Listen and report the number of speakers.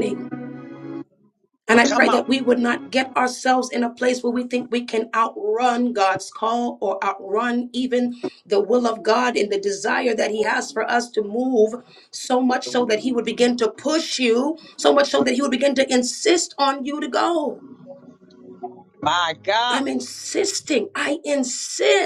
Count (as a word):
two